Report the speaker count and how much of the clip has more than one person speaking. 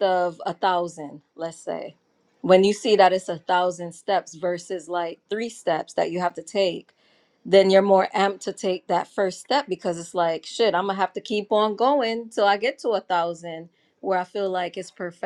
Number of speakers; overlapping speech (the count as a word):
one, no overlap